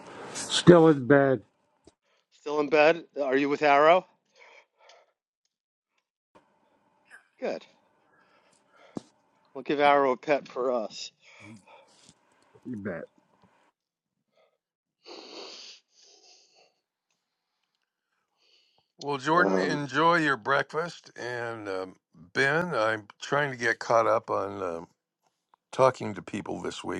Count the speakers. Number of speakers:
3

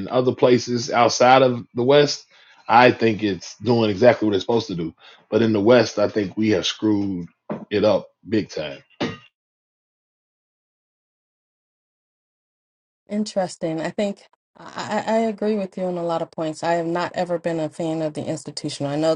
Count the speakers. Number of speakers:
2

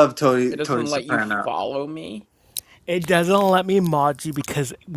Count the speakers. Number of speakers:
3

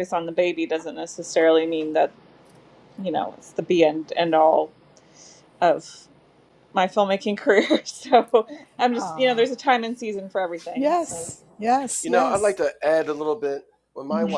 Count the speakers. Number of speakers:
3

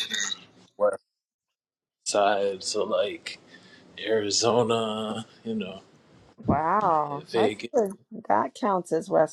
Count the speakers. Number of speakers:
2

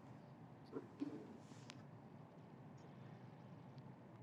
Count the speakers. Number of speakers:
0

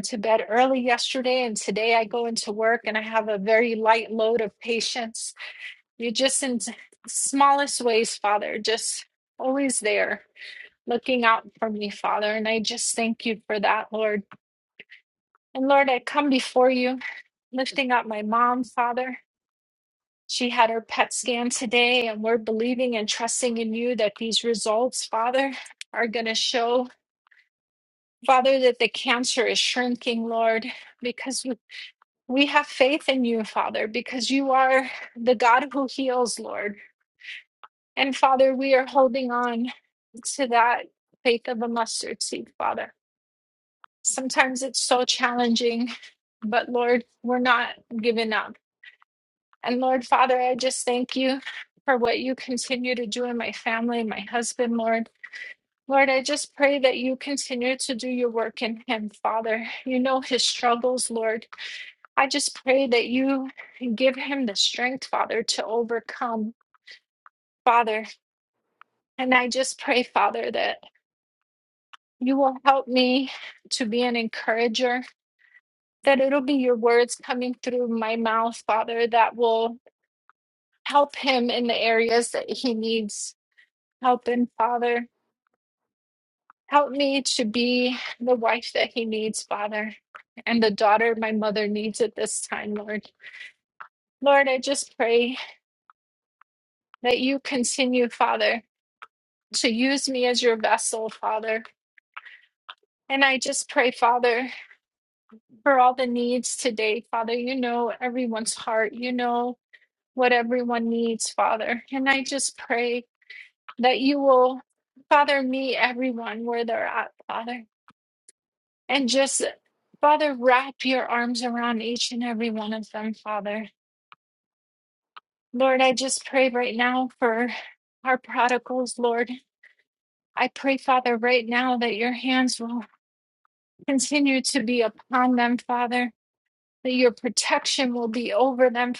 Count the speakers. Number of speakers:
1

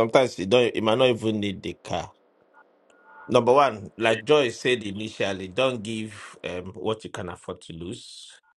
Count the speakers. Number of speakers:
1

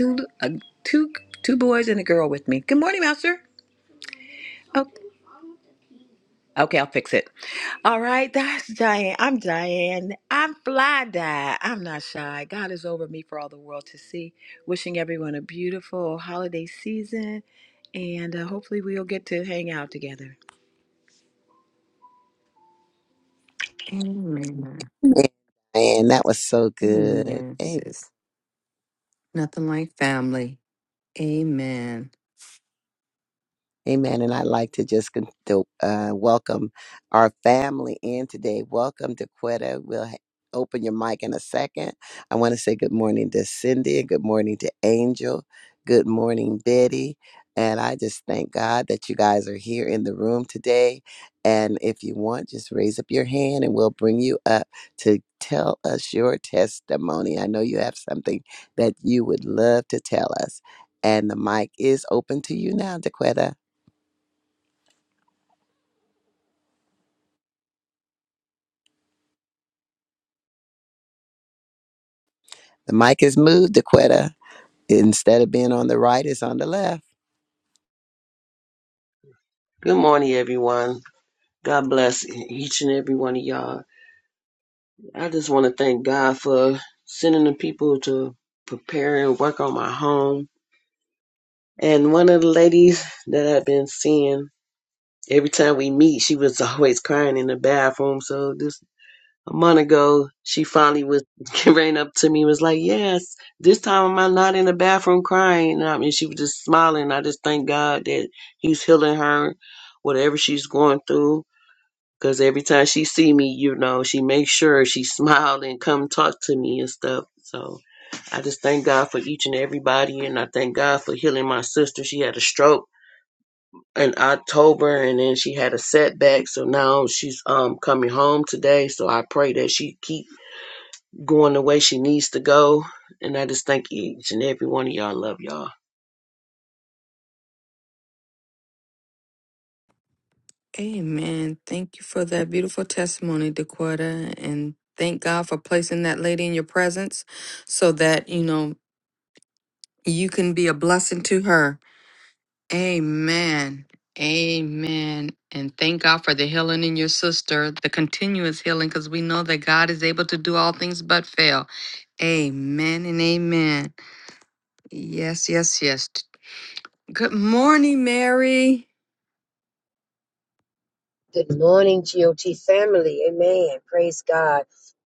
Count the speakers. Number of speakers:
5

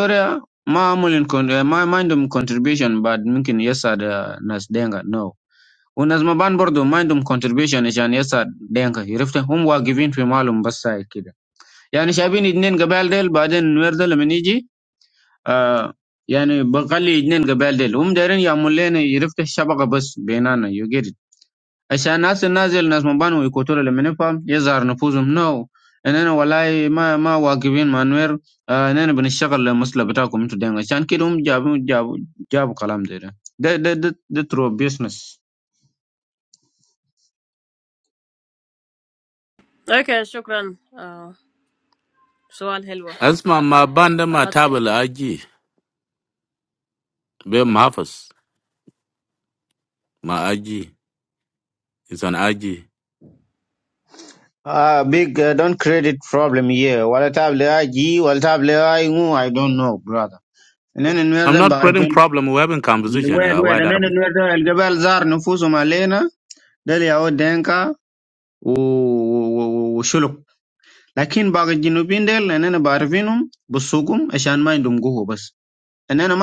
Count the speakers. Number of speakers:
3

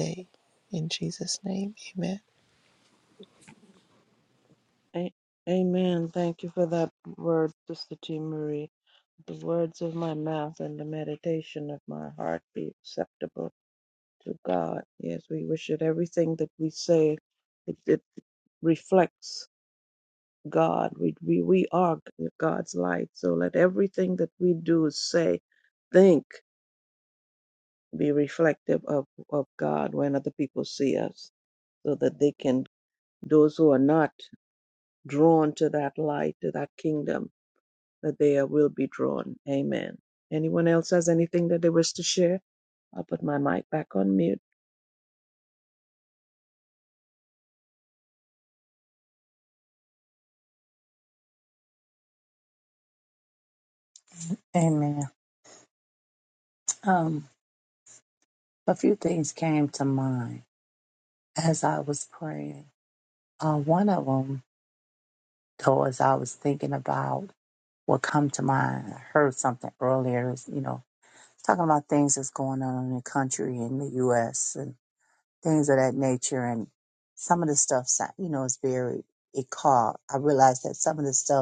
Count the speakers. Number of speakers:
3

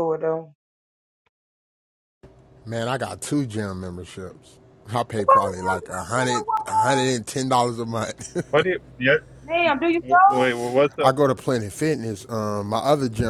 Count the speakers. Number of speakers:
3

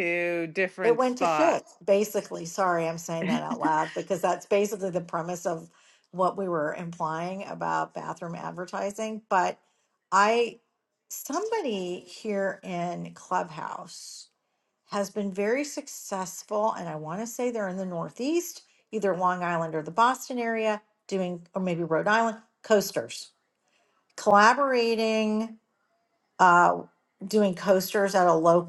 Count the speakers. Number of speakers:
2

